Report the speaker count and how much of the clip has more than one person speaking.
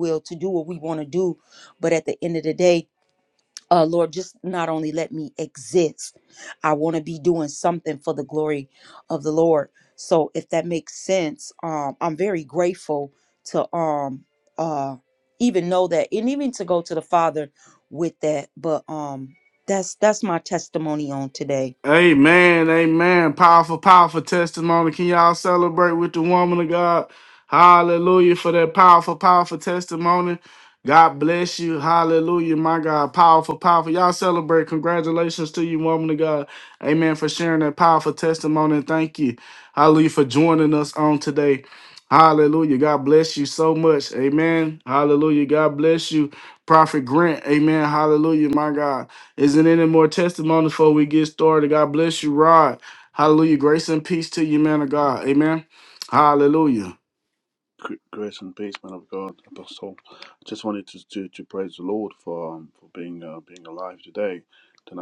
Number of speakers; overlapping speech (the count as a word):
three, no overlap